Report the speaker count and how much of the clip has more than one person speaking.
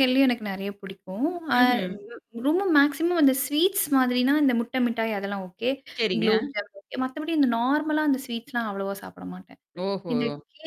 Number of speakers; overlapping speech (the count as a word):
two, about 4%